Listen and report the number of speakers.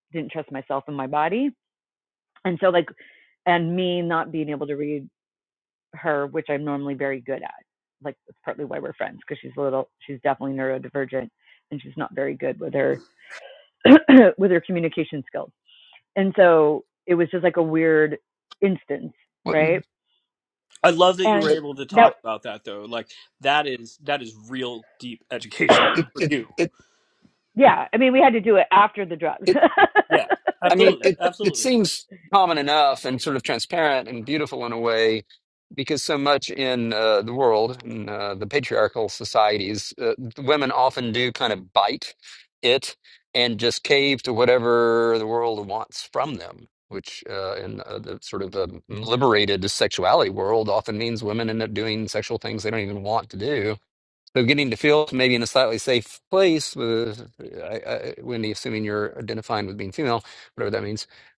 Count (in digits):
3